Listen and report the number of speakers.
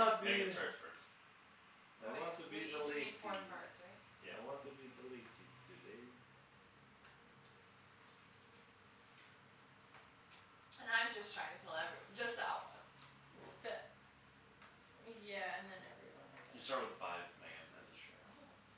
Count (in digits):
4